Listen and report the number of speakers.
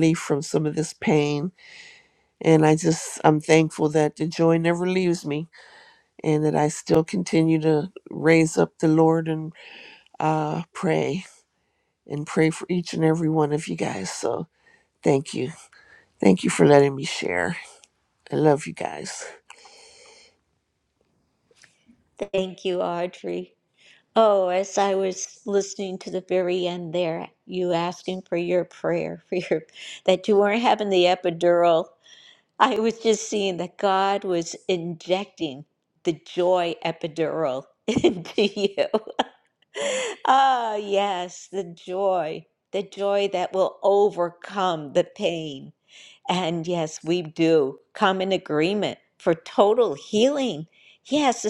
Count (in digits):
2